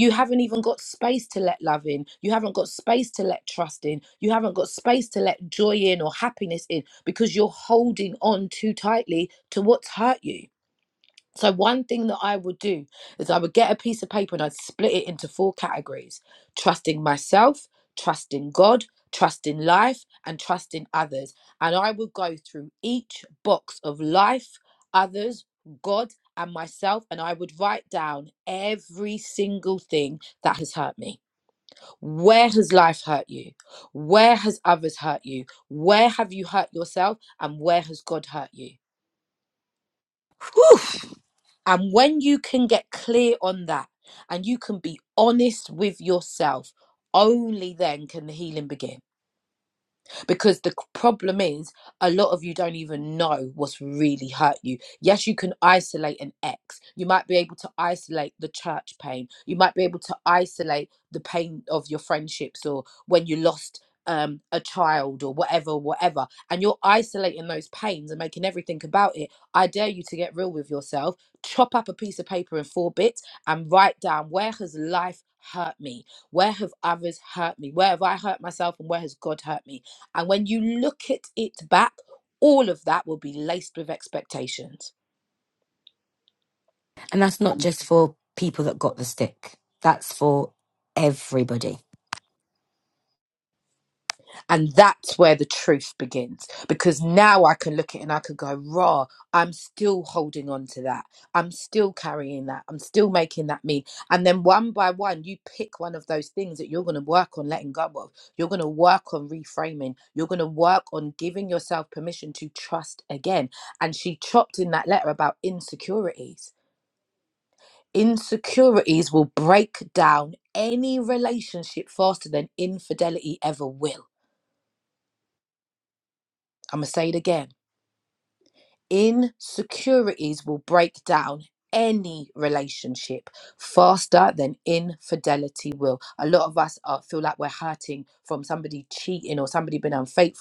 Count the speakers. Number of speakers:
2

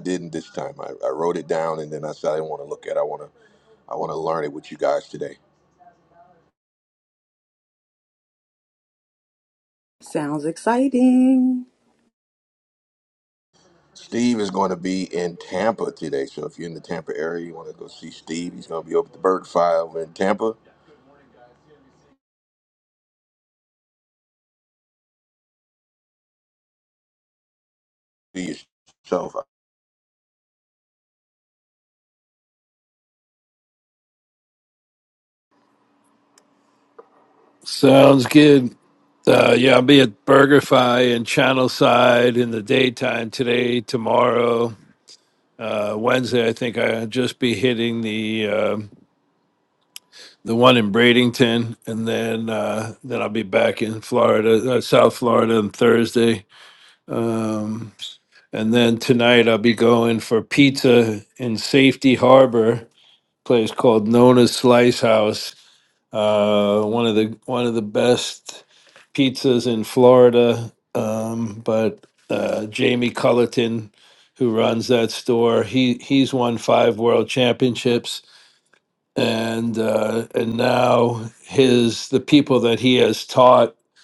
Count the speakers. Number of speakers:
3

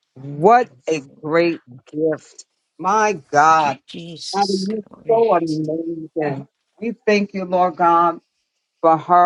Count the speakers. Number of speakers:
2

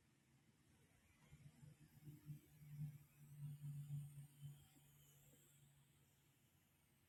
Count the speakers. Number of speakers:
0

